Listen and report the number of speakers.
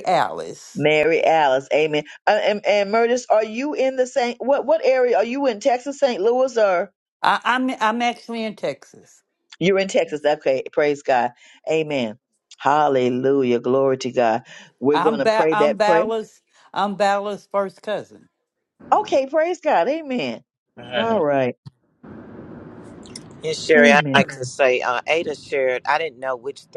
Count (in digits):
3